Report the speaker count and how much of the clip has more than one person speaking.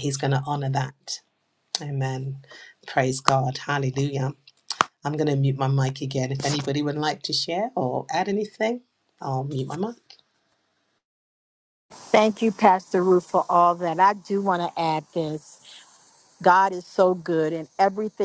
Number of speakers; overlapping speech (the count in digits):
2, no overlap